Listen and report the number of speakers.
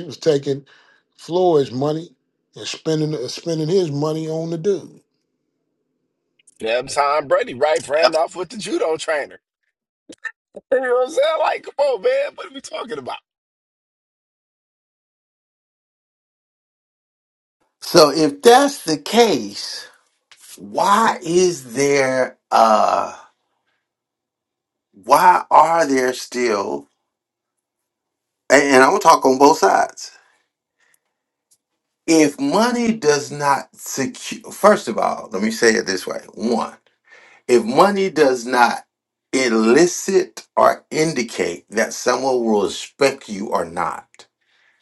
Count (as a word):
three